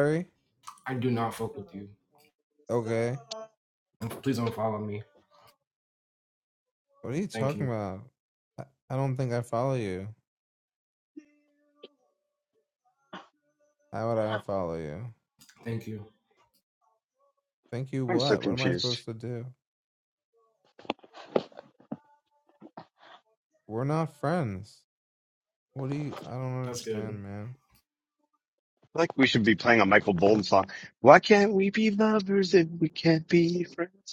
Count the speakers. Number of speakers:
three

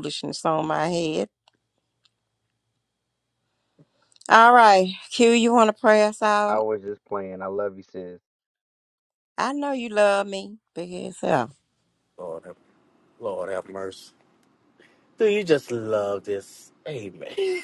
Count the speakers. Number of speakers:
three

